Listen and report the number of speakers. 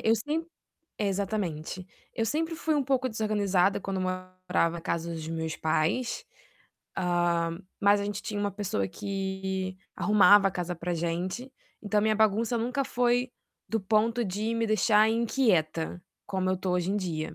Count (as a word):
one